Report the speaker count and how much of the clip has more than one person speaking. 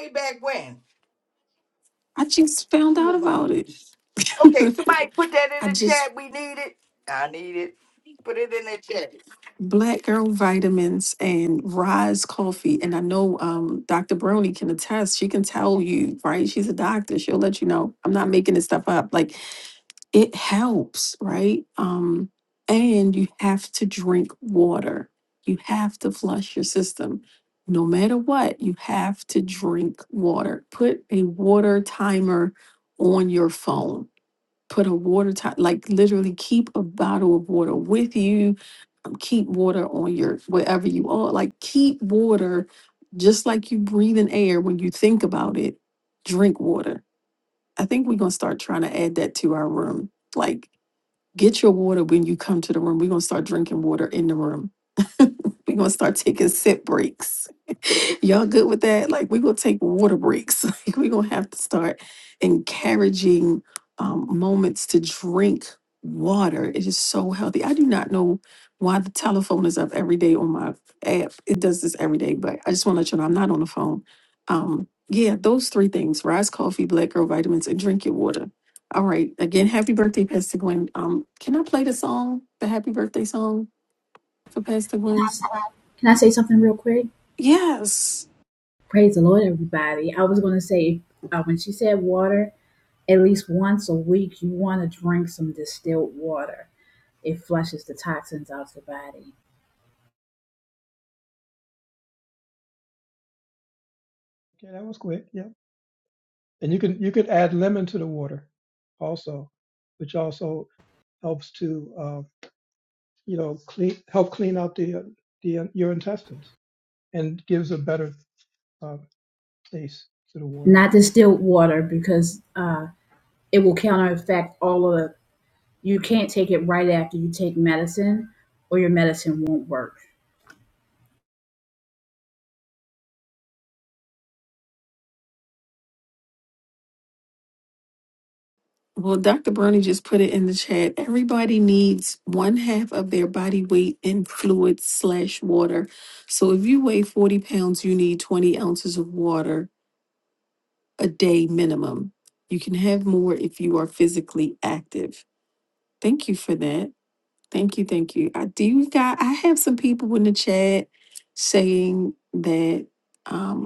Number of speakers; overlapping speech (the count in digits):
4, about 1%